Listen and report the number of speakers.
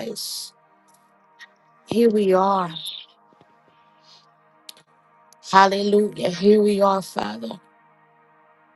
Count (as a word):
one